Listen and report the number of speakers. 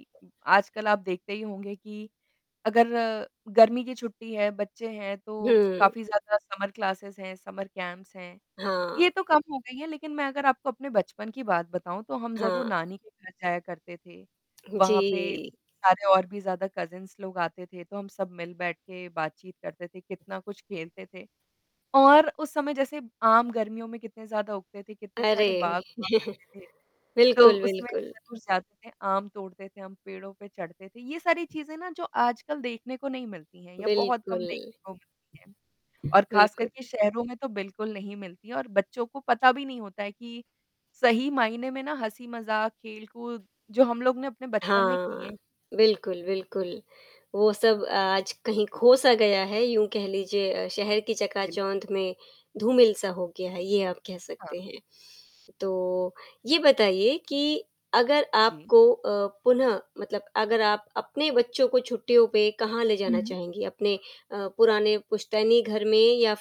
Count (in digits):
2